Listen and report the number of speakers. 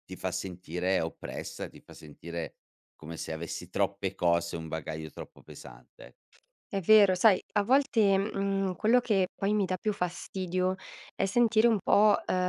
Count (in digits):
2